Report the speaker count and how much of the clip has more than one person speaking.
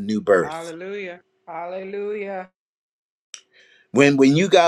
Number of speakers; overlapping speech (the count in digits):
2, about 3%